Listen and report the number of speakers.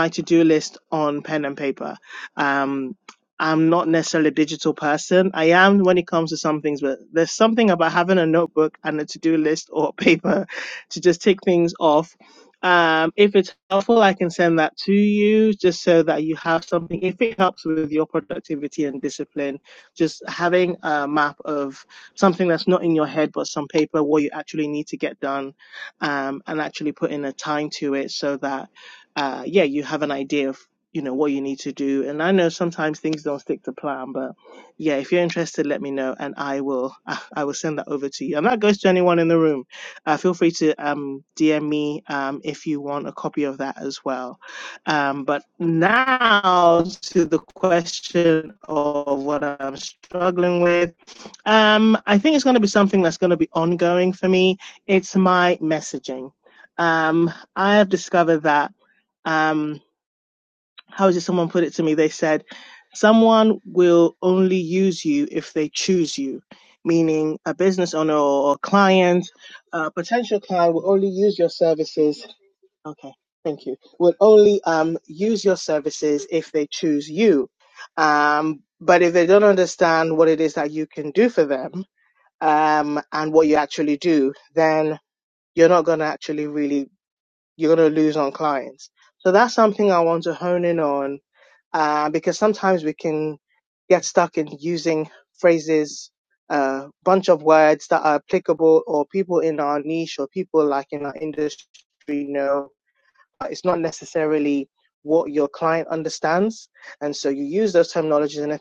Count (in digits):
1